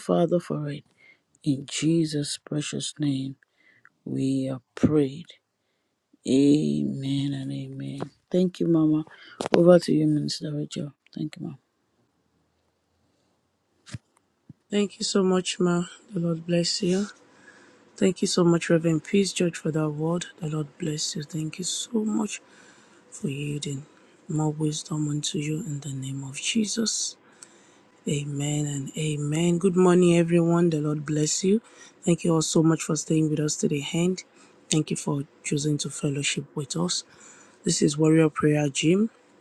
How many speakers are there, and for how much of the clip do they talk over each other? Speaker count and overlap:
2, no overlap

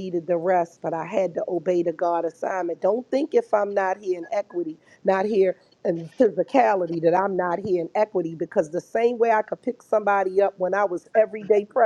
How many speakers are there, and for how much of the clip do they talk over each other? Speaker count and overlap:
1, no overlap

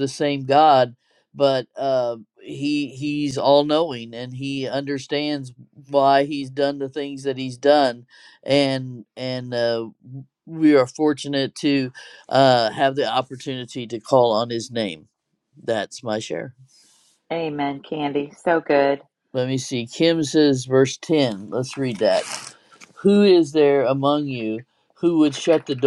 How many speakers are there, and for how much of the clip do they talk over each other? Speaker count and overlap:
2, no overlap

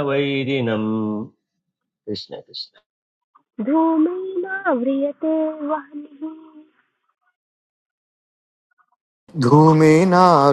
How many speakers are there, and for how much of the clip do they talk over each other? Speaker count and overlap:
3, no overlap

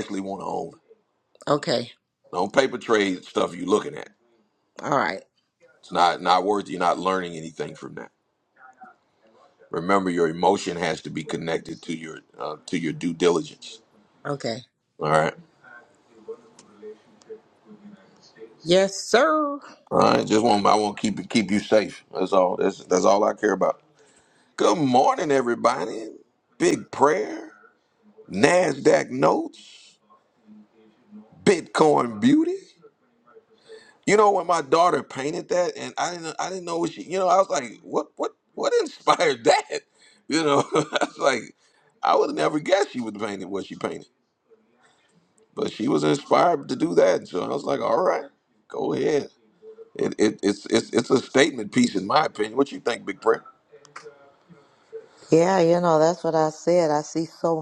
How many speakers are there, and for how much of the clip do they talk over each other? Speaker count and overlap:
3, no overlap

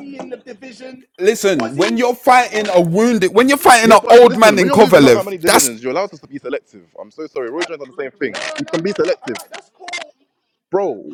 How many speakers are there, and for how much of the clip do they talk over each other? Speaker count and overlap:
3, about 43%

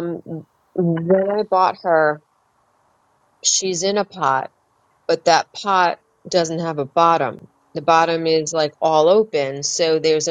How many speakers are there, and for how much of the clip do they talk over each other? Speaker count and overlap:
1, no overlap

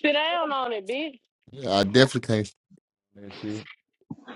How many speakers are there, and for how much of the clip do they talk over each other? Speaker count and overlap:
2, no overlap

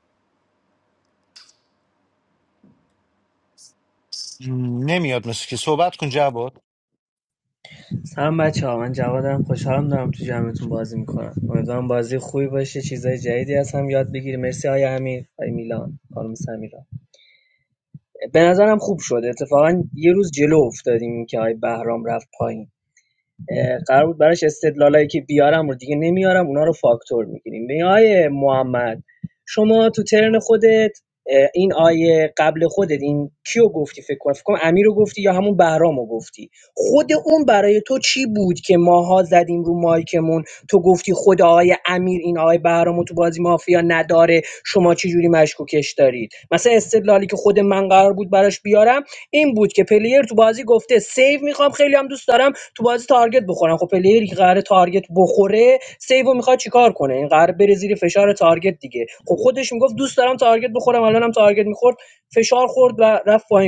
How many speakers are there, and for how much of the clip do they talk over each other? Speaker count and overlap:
2, no overlap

